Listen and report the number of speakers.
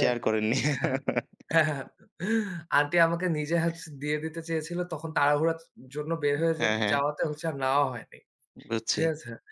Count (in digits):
2